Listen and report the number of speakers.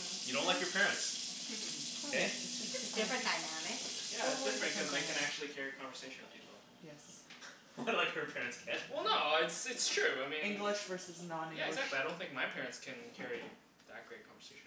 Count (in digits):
4